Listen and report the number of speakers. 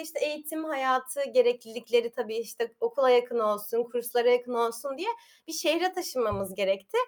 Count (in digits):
1